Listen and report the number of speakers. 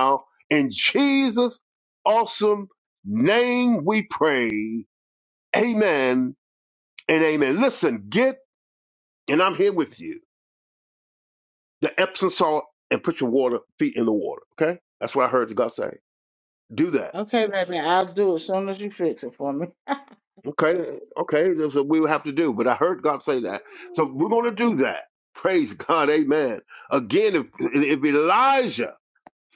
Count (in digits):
2